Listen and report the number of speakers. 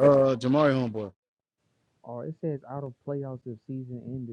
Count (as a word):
two